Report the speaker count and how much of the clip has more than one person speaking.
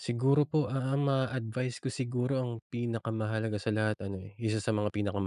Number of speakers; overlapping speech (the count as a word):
one, no overlap